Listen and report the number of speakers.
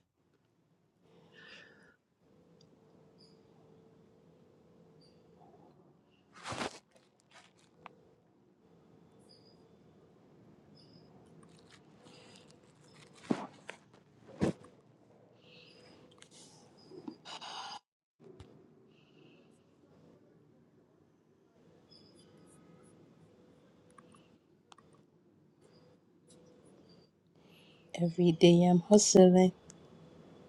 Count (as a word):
one